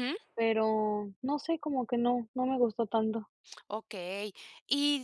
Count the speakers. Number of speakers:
two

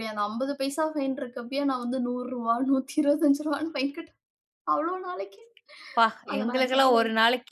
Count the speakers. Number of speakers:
two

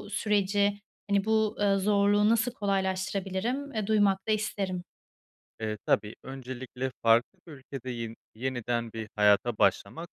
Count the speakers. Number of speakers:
two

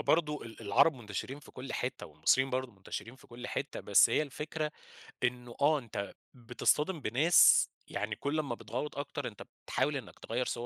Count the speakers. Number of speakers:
one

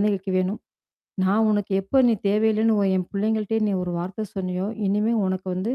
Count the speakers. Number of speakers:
one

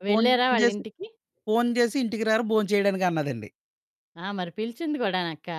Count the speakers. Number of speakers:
two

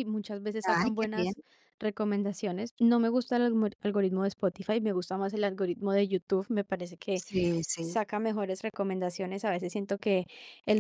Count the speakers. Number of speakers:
two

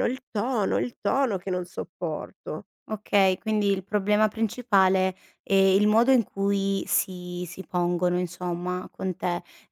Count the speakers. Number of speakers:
two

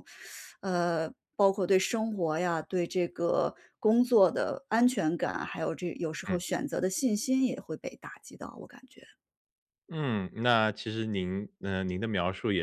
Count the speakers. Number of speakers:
two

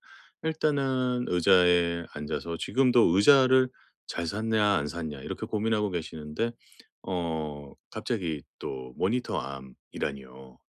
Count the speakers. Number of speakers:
one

